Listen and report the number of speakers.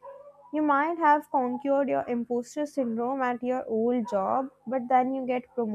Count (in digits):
1